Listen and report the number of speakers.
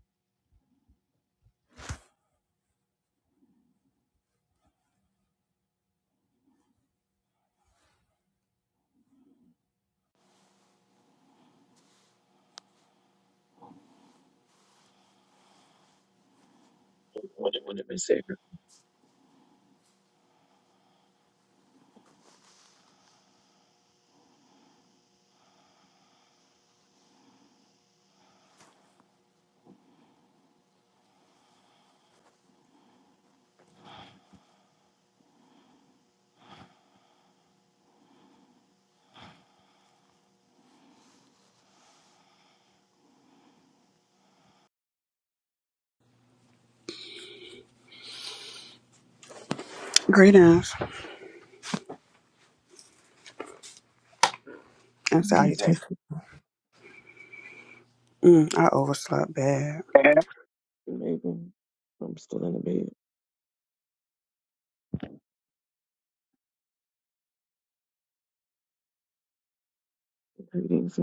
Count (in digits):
2